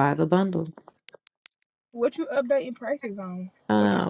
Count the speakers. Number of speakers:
2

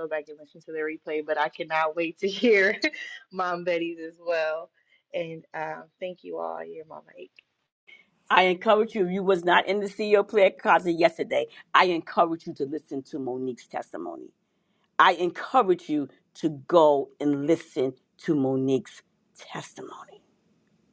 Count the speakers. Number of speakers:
2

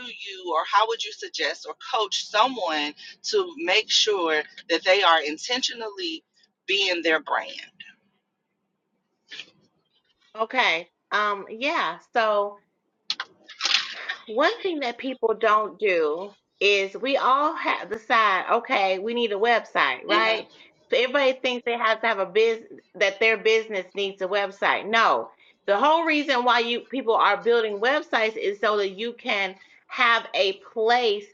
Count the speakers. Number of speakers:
2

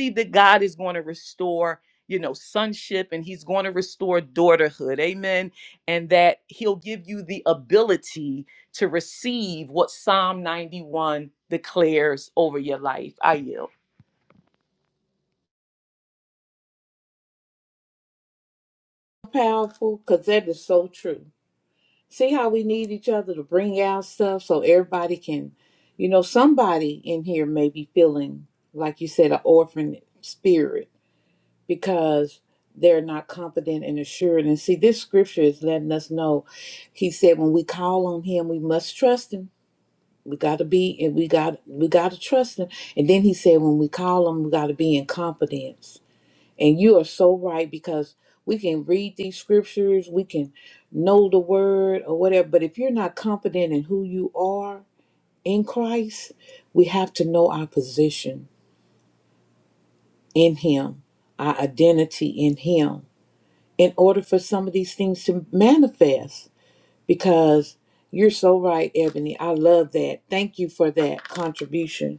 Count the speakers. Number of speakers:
2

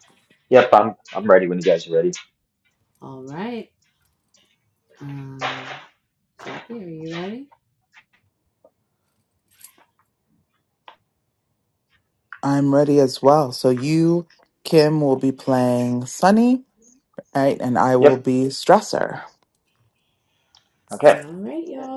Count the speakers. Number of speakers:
3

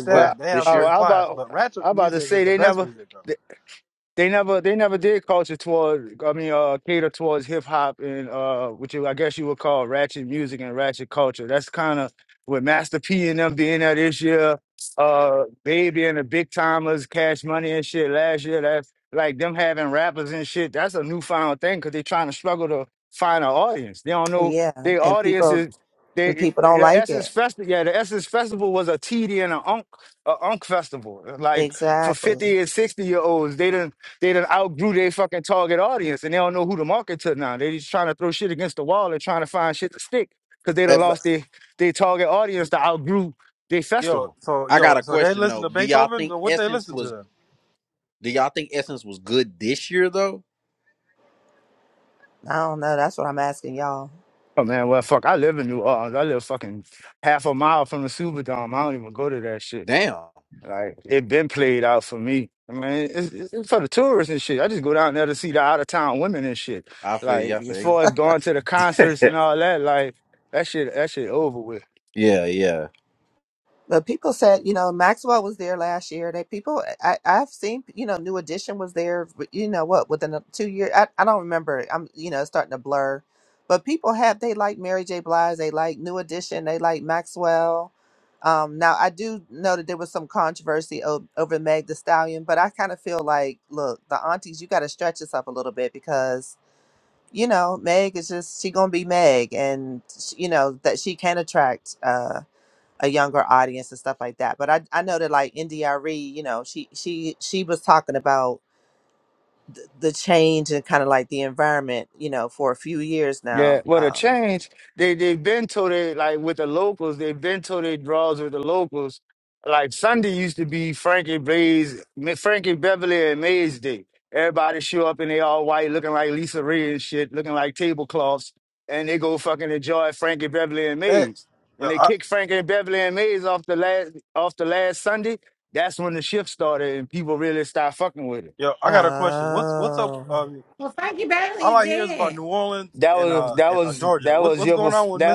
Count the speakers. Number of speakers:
5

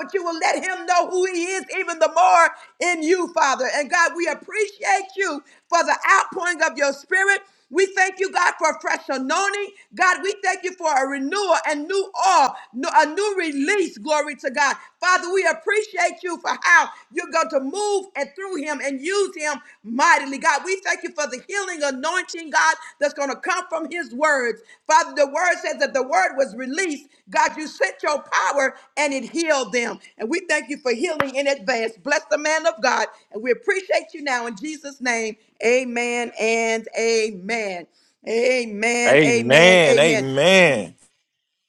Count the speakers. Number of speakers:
2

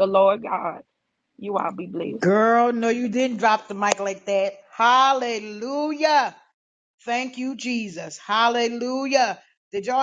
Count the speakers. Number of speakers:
2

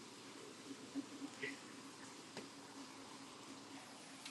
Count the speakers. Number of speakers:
0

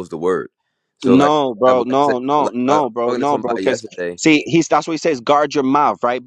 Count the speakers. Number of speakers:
2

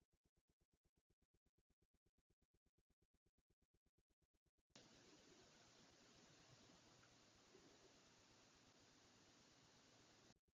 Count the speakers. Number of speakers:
0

